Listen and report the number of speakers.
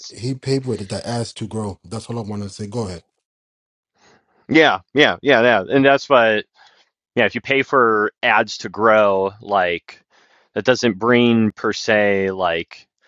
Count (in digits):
2